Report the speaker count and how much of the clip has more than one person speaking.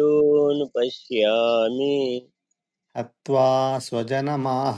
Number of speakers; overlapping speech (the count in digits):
2, no overlap